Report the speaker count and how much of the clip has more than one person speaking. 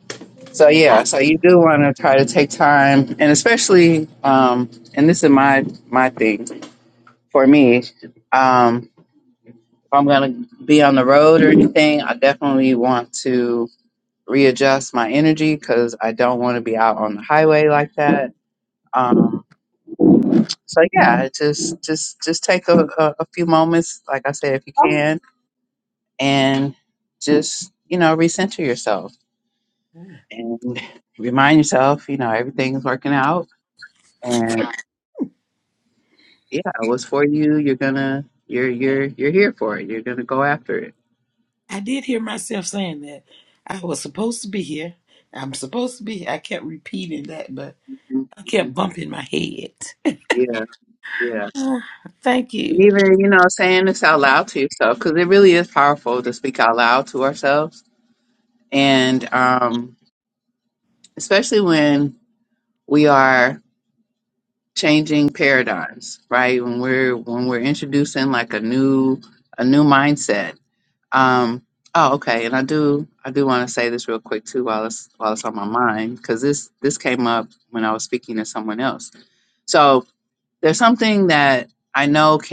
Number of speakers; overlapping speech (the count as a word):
two, about 1%